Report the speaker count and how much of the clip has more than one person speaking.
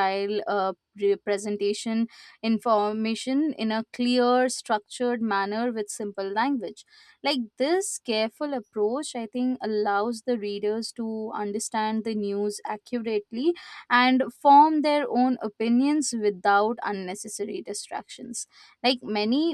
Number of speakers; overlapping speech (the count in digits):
1, no overlap